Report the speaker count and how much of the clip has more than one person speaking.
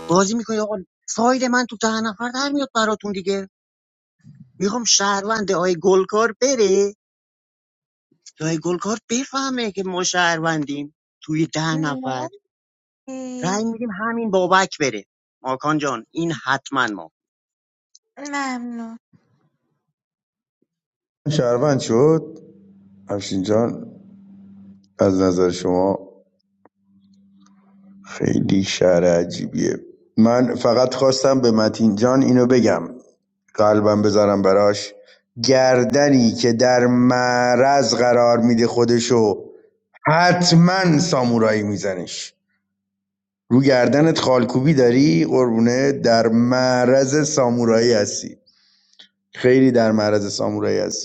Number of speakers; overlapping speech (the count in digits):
3, under 1%